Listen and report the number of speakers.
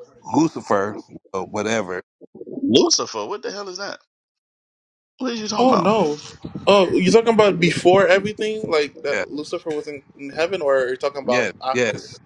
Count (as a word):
three